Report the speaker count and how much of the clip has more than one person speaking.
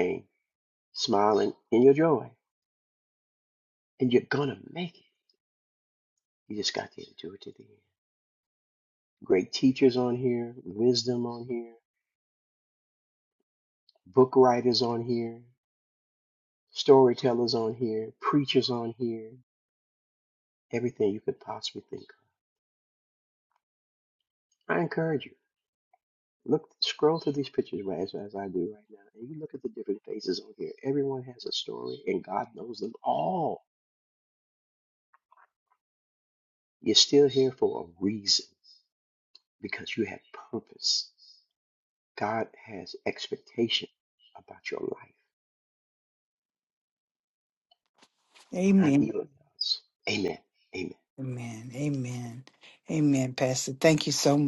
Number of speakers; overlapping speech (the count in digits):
2, about 1%